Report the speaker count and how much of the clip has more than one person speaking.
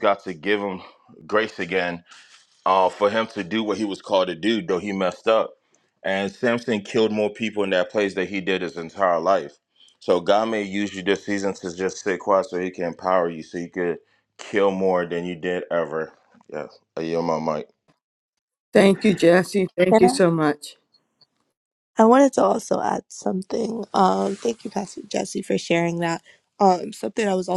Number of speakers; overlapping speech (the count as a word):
three, no overlap